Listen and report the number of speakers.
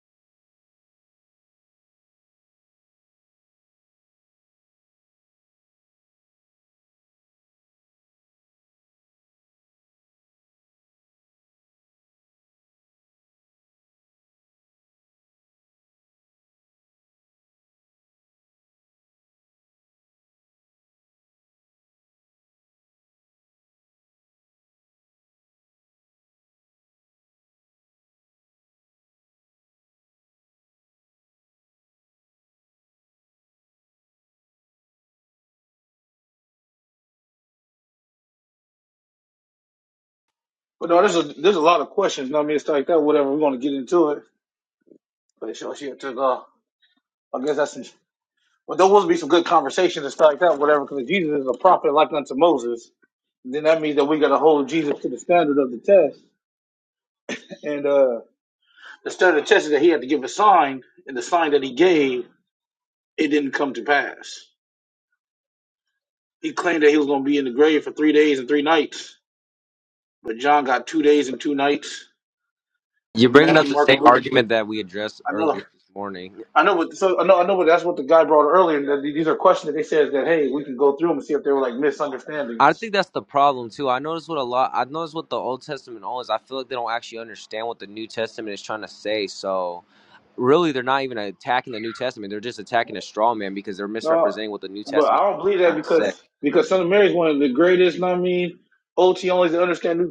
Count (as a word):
two